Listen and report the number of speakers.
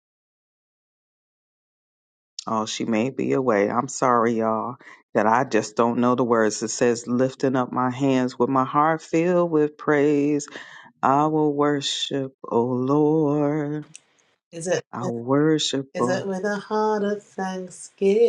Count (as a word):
two